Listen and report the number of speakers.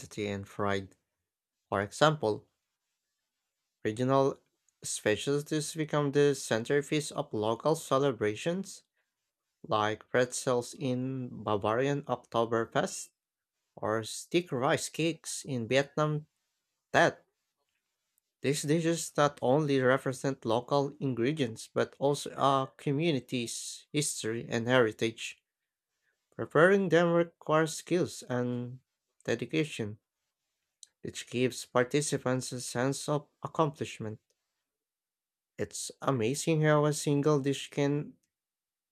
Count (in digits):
1